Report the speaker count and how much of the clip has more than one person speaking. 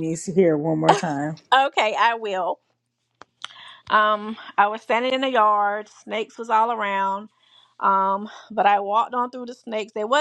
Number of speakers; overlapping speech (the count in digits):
2, no overlap